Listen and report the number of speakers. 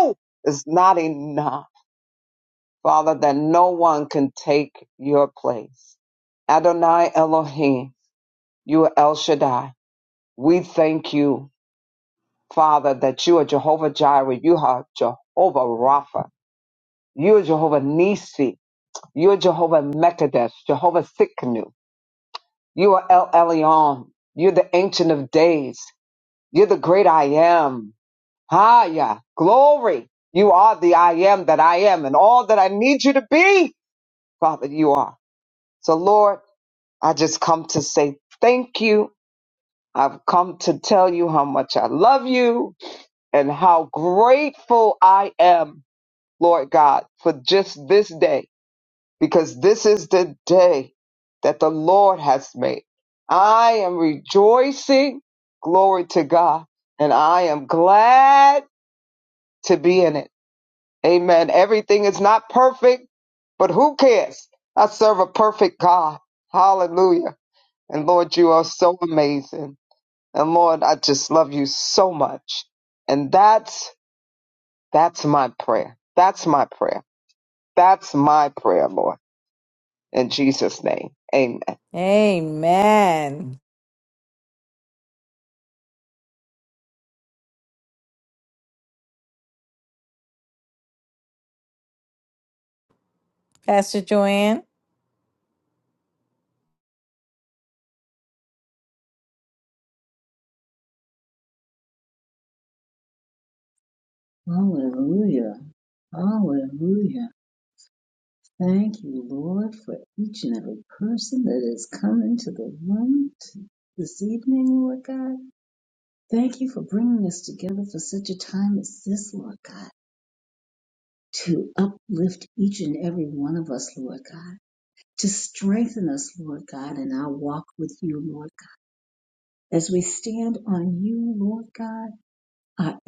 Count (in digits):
3